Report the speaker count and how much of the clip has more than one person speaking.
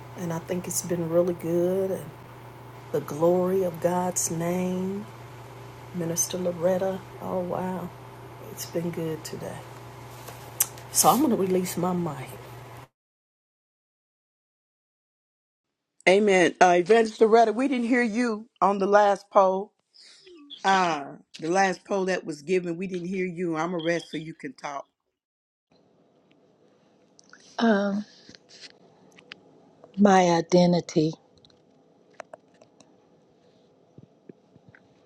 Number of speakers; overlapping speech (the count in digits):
3, no overlap